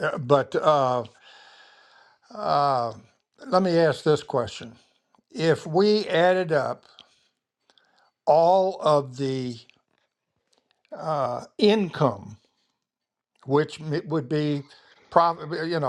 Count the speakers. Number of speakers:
one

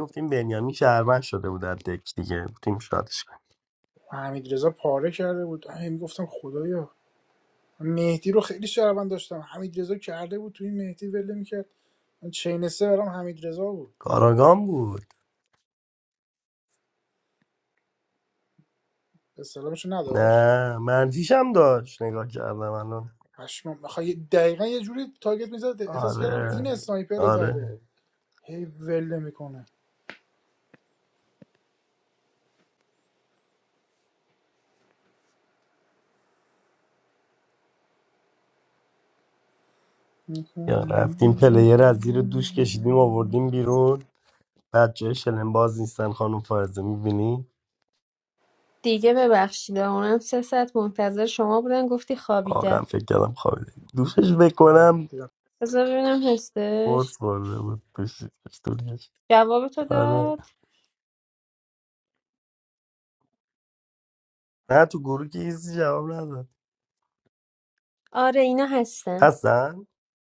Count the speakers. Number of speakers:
three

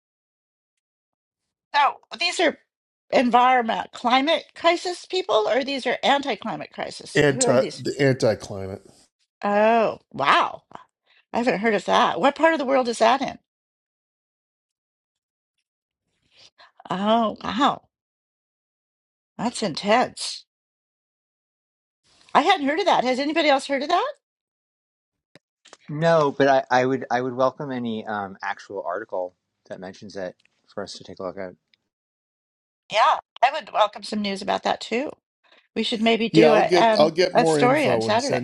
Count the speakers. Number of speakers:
three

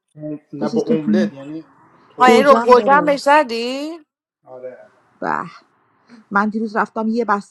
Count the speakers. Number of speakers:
three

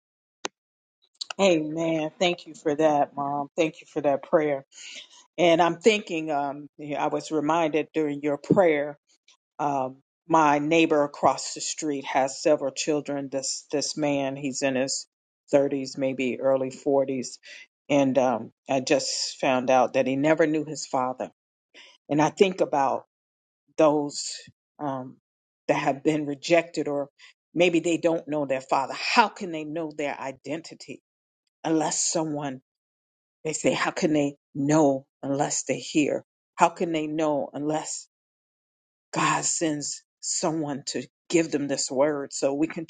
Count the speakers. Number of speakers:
one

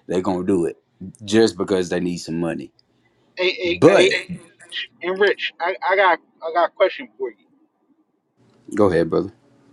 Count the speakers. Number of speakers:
two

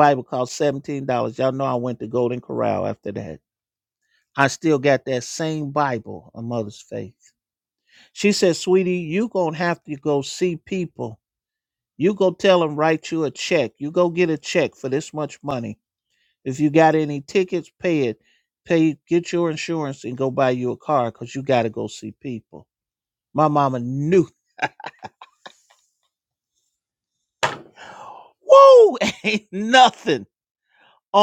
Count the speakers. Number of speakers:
one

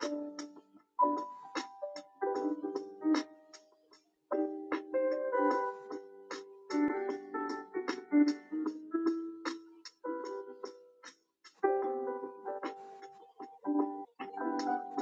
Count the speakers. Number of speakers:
zero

